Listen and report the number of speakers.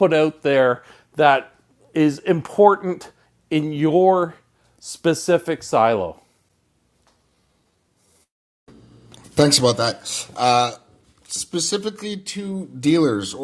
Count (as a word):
two